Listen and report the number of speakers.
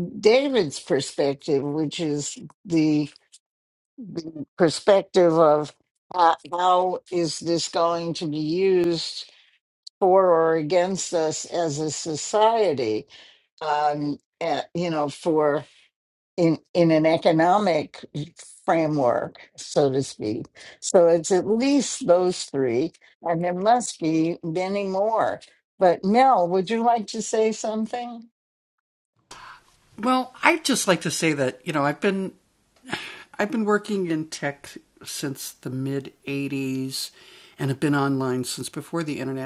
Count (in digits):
2